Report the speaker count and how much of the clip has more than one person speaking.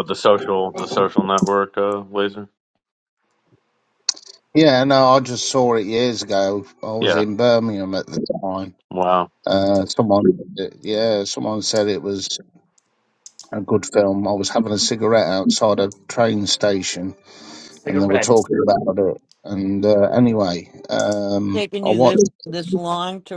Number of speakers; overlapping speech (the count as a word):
three, about 4%